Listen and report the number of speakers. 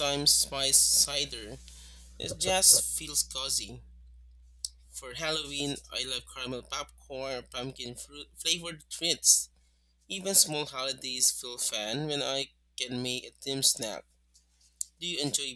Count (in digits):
1